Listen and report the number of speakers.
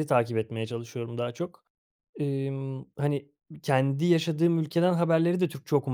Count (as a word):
one